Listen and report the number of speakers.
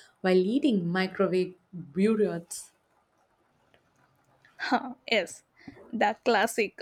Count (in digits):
2